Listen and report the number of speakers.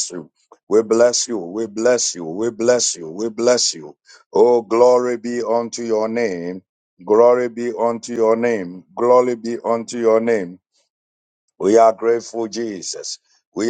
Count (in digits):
1